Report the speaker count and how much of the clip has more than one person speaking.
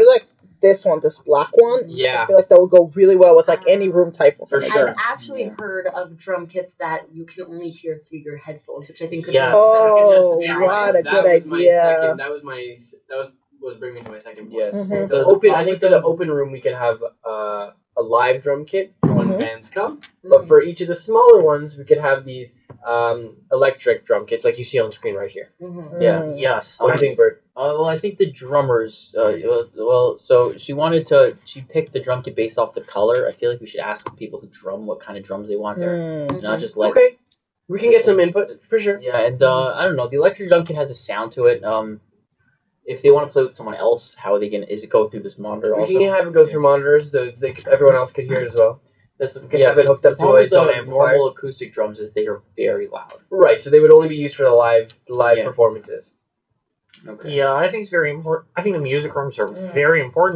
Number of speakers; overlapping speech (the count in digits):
5, about 20%